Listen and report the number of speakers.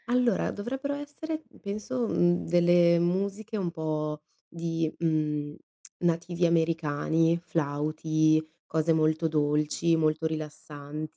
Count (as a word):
one